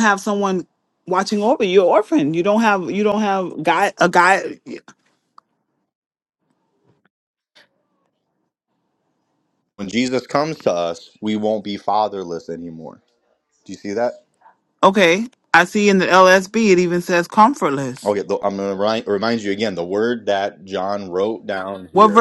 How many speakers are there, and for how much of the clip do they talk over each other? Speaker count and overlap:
2, about 1%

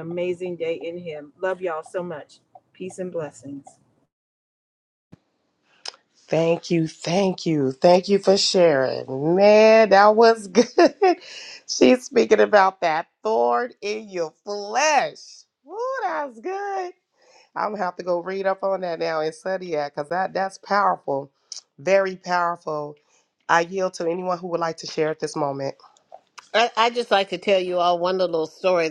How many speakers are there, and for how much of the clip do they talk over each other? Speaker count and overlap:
3, no overlap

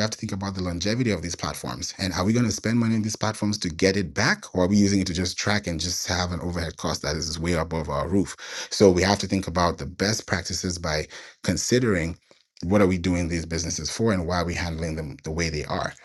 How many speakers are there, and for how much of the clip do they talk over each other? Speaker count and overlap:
1, no overlap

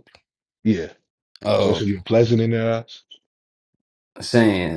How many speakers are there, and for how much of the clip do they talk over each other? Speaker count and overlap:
2, about 6%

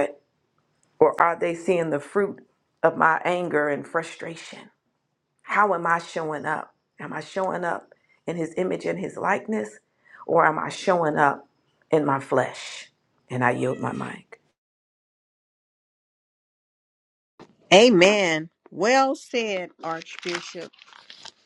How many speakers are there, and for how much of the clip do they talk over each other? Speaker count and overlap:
2, no overlap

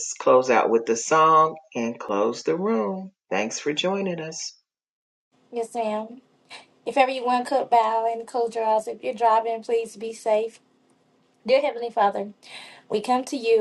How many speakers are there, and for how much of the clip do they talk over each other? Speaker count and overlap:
2, no overlap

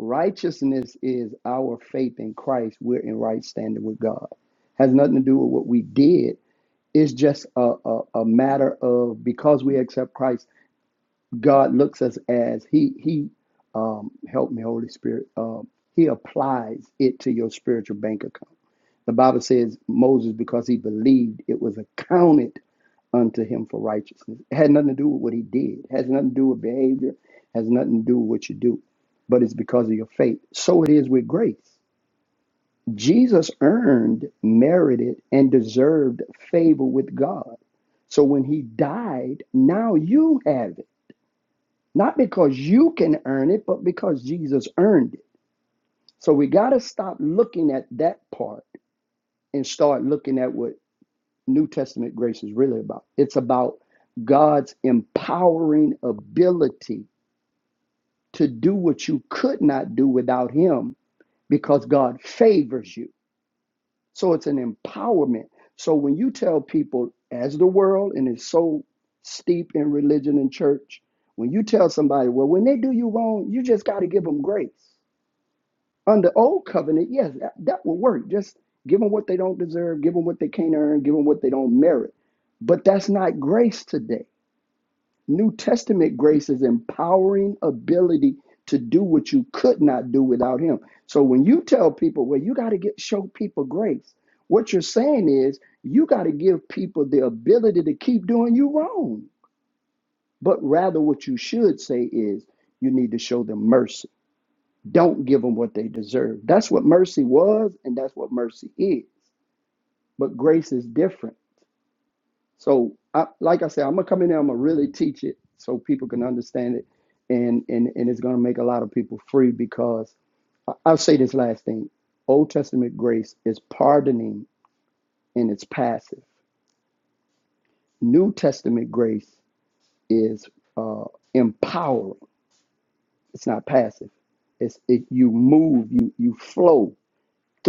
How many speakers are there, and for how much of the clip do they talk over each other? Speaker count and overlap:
1, no overlap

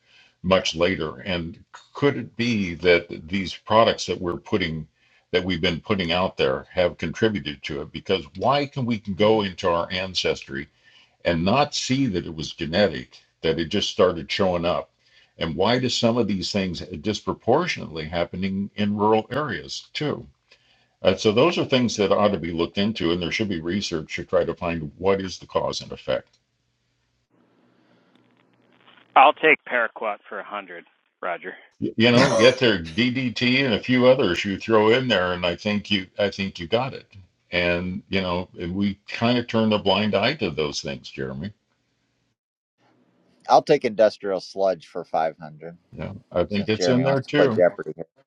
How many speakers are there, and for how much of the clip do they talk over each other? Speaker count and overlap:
3, about 2%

